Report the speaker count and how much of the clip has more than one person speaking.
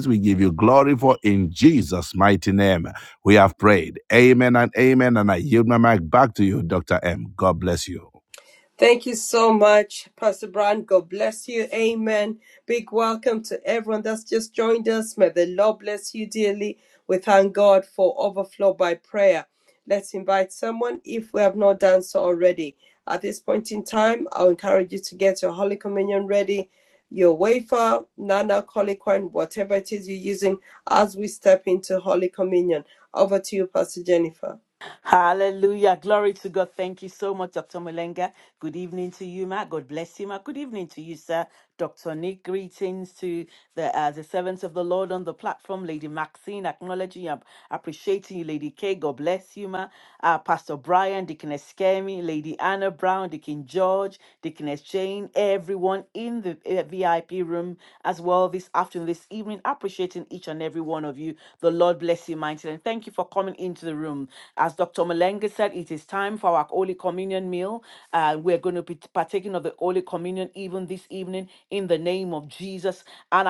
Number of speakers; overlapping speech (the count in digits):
3, no overlap